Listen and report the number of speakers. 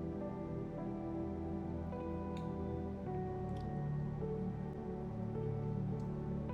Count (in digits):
0